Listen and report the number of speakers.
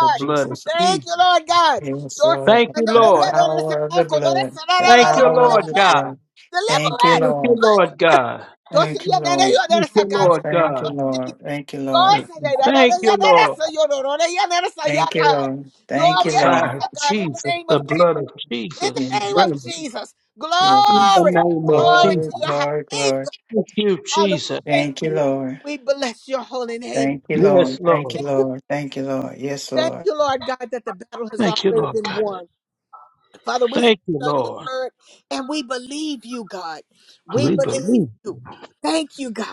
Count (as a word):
three